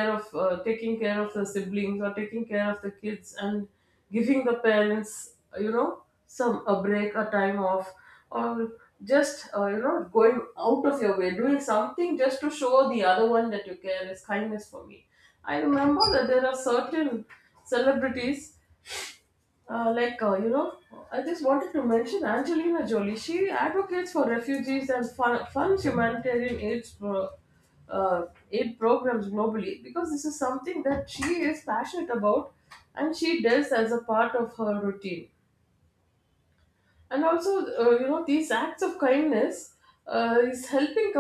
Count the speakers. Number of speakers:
one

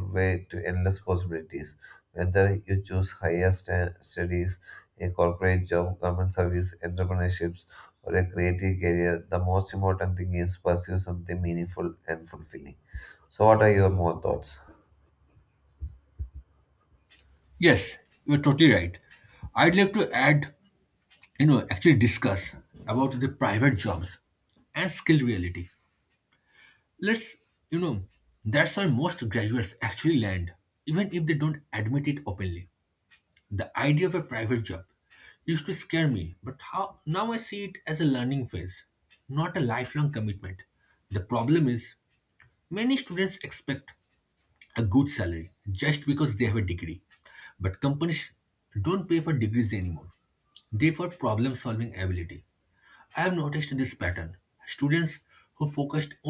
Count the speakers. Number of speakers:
two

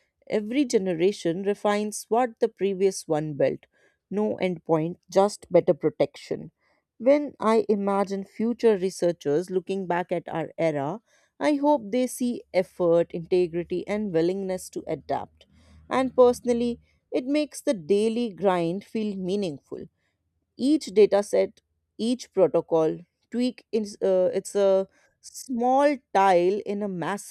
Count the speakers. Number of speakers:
one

